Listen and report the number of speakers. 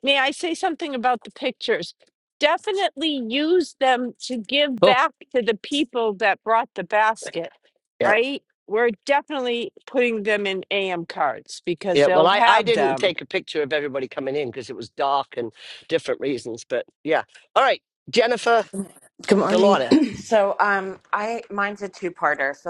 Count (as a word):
three